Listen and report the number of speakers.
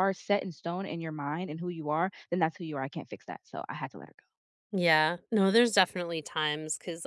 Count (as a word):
two